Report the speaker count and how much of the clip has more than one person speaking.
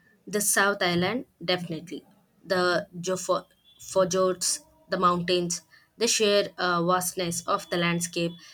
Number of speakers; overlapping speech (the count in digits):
1, no overlap